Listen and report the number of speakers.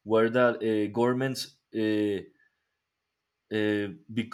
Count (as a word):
one